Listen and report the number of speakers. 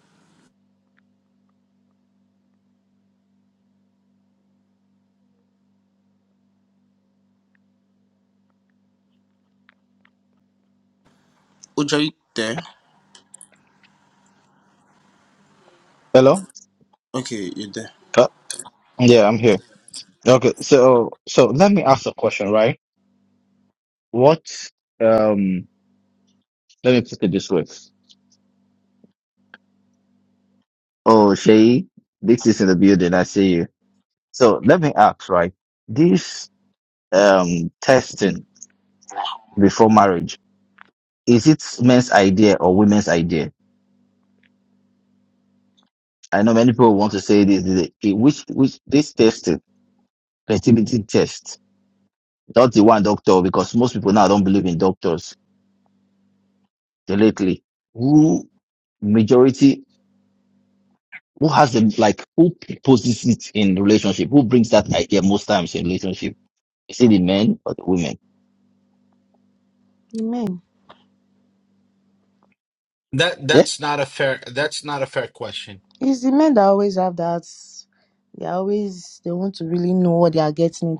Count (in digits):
4